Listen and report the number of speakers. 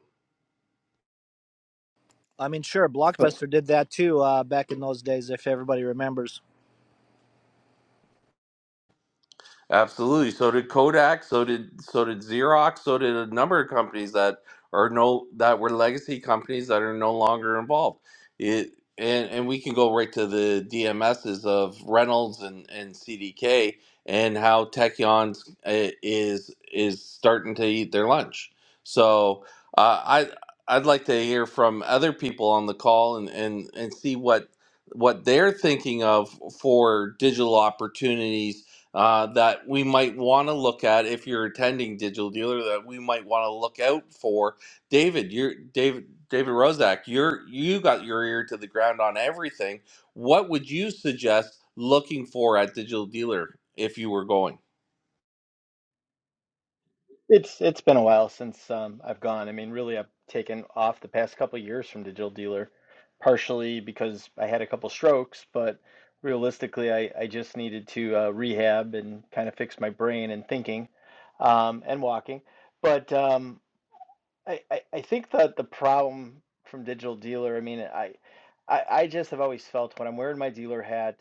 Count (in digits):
3